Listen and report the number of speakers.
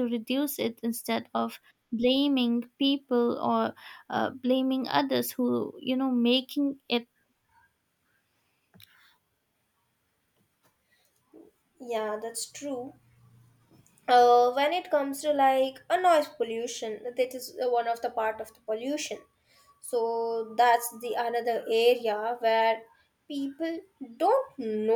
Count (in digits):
2